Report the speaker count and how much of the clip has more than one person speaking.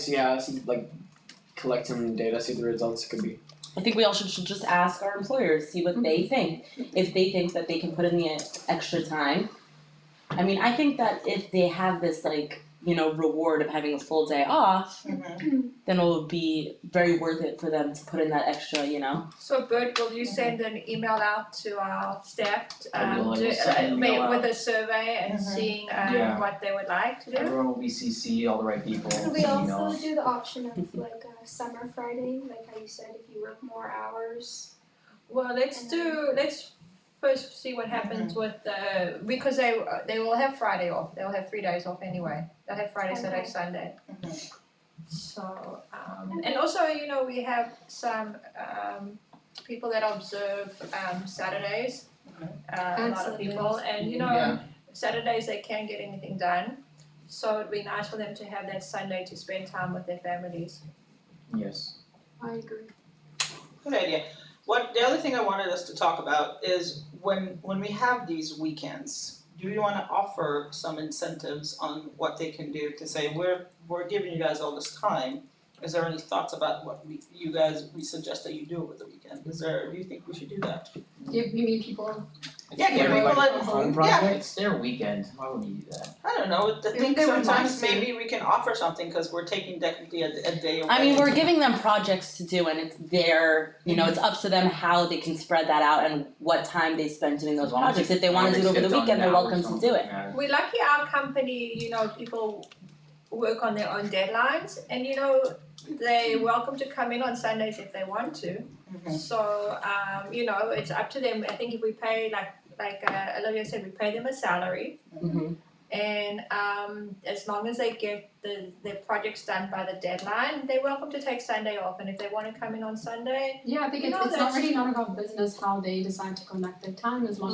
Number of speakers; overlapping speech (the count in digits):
7, about 11%